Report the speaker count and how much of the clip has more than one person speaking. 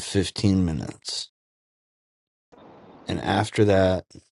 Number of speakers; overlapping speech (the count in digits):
1, no overlap